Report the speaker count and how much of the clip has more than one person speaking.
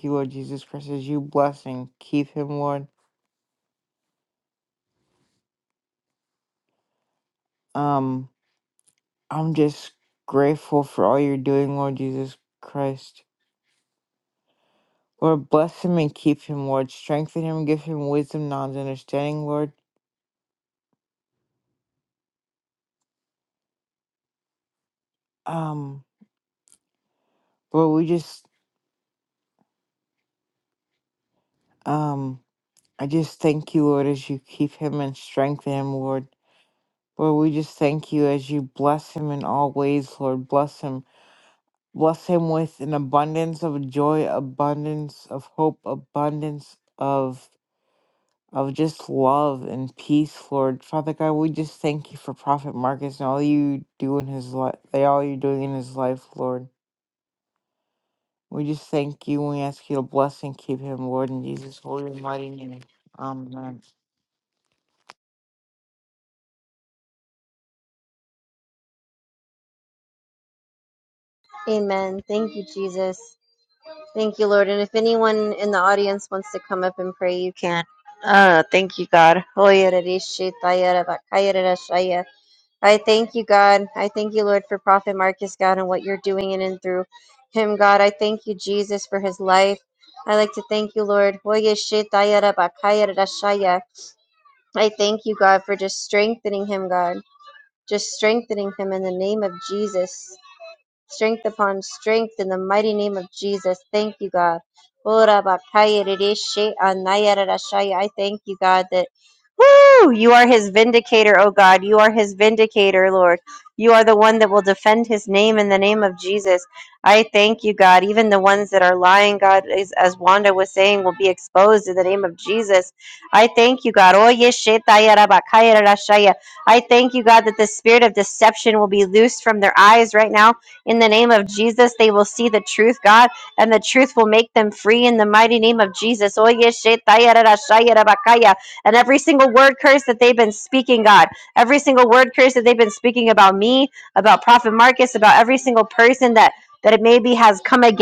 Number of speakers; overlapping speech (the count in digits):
2, no overlap